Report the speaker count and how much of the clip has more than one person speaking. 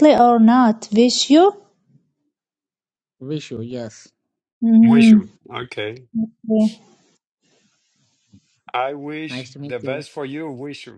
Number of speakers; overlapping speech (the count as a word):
three, about 7%